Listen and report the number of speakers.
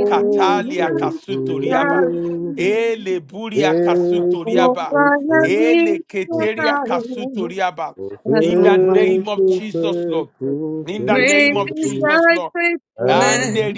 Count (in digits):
3